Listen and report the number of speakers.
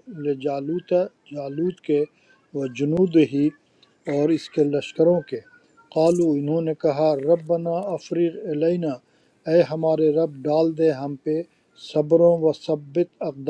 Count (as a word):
one